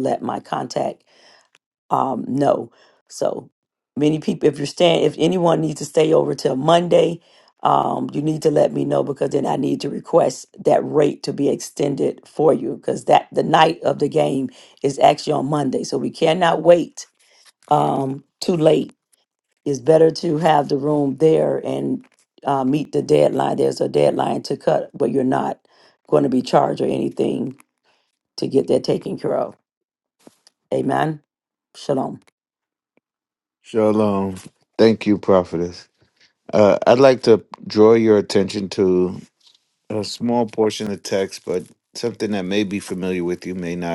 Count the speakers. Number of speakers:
2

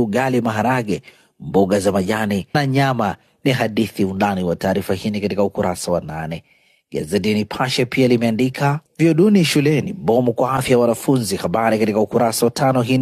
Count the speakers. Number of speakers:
1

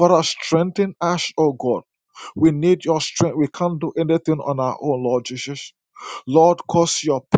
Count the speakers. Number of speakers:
1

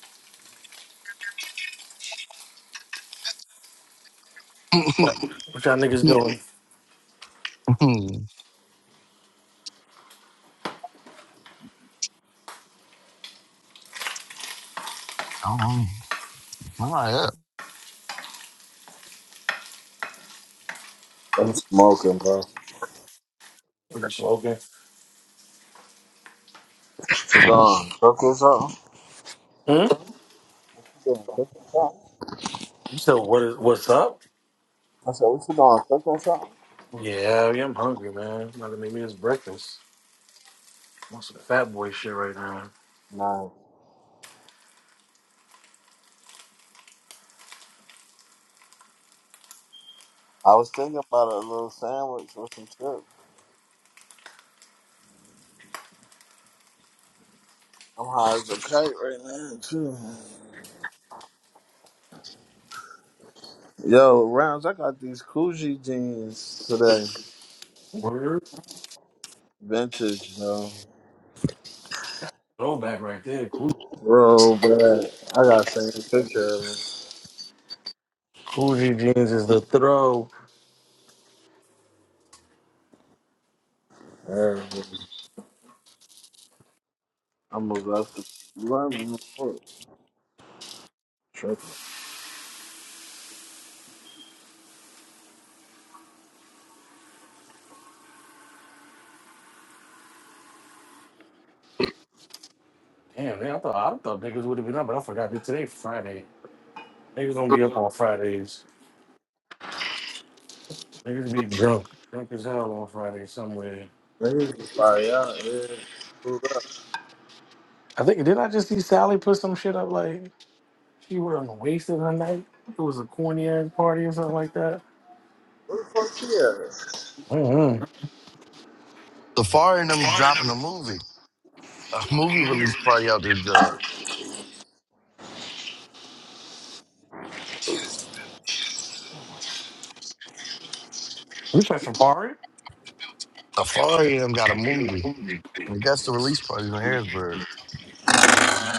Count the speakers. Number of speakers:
3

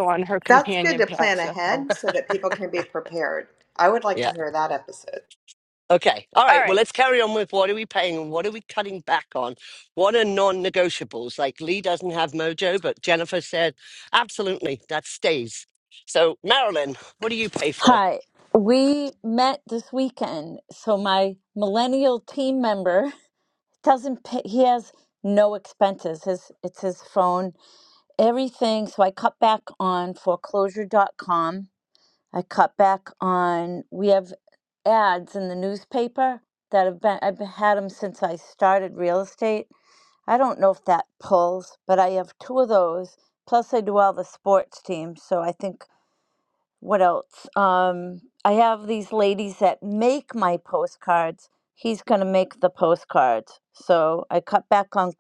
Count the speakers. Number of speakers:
4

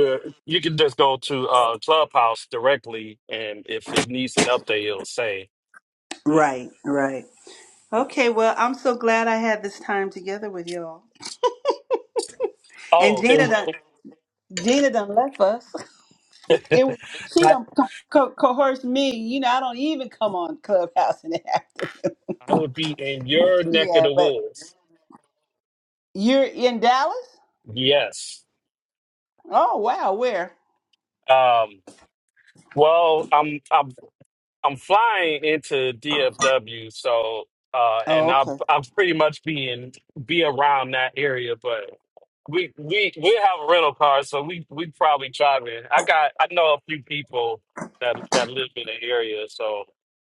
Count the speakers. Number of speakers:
2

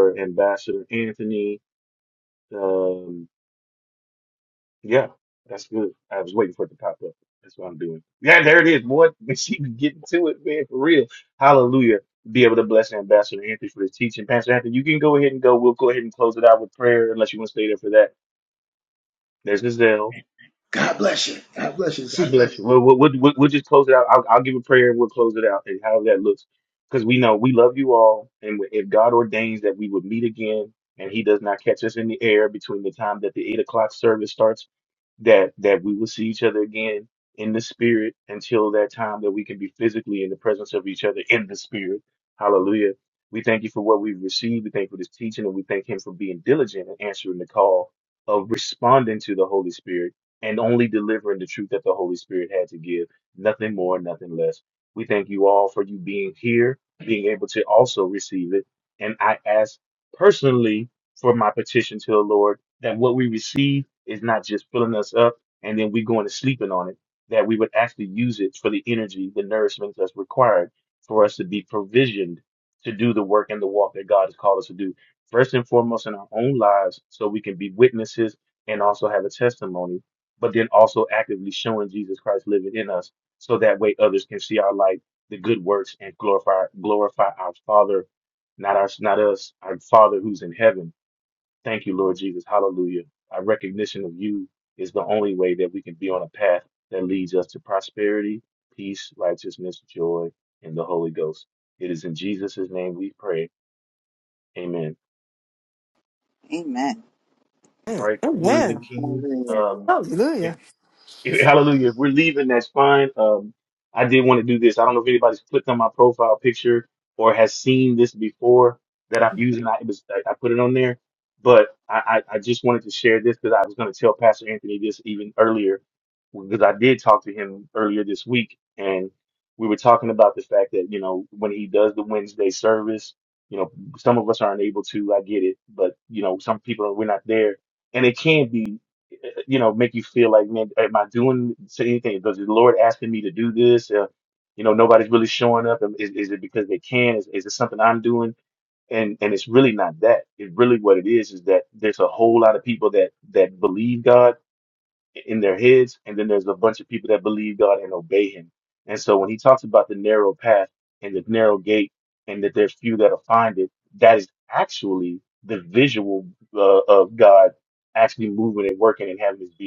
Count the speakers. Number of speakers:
4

